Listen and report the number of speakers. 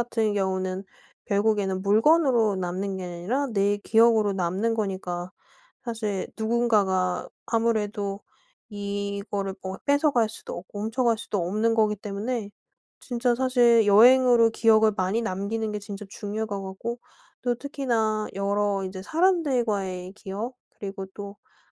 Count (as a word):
one